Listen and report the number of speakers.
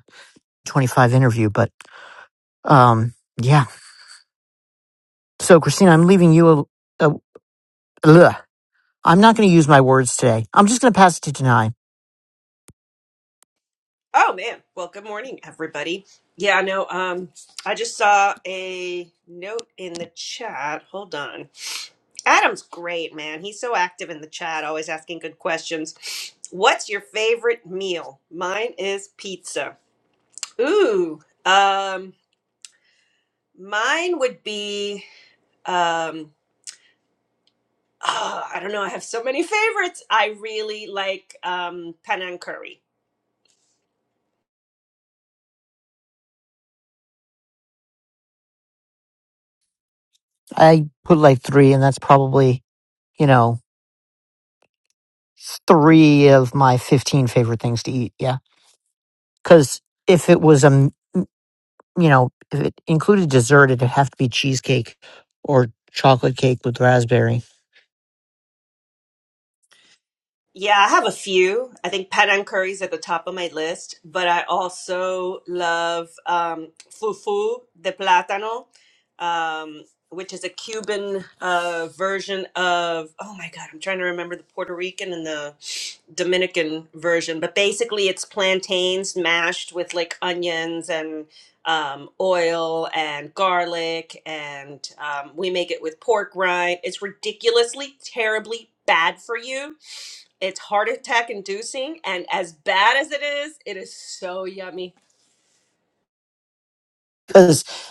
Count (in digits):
2